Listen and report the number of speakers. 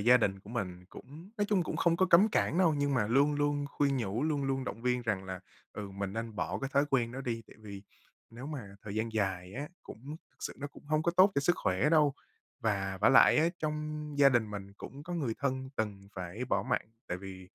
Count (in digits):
1